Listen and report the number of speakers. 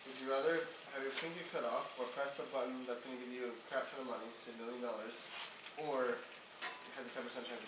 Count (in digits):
1